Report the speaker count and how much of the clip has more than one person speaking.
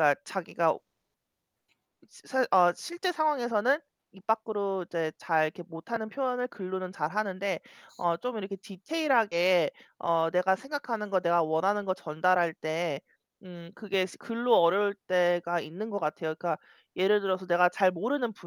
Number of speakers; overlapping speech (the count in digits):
1, no overlap